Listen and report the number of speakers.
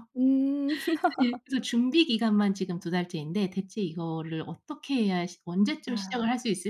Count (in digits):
2